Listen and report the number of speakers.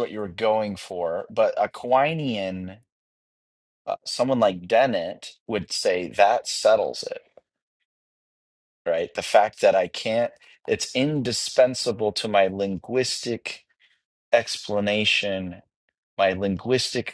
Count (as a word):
one